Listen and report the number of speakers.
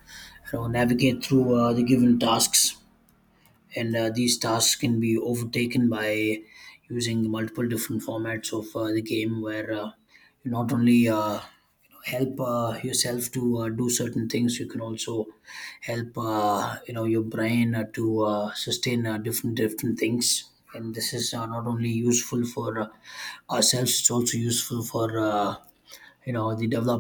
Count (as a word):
one